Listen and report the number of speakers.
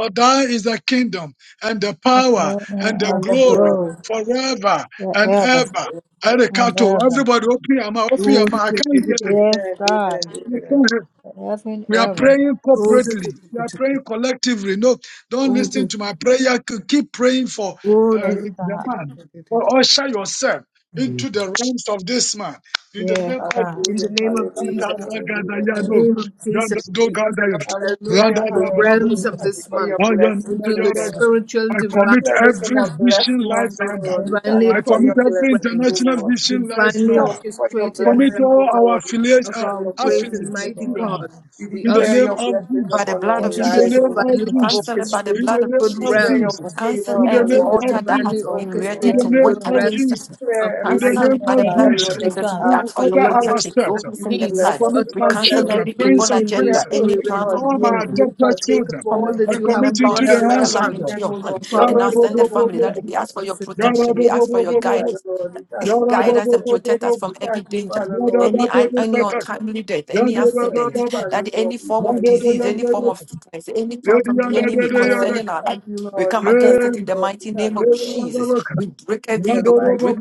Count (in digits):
5